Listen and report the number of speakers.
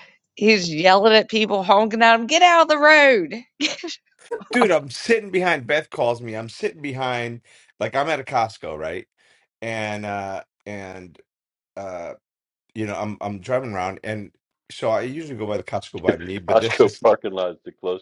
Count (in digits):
3